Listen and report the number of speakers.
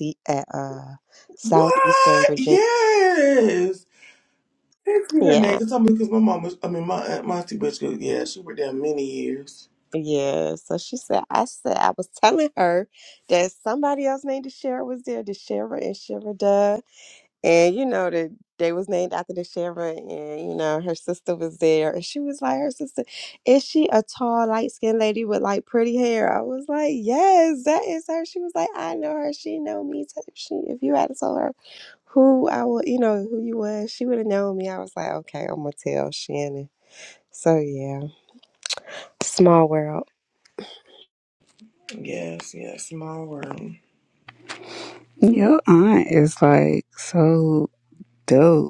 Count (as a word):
three